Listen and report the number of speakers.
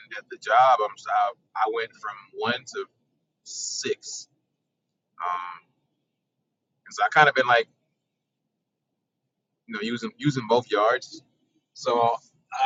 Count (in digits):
1